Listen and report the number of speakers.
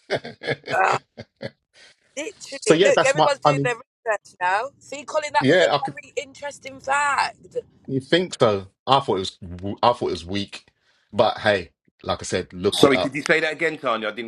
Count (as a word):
three